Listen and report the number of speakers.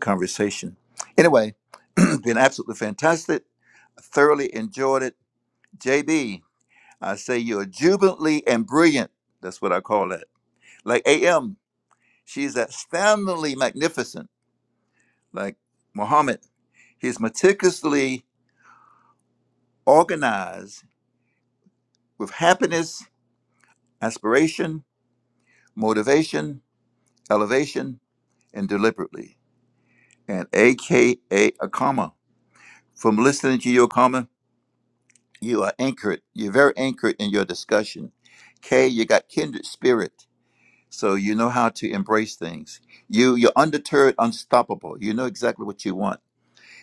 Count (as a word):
one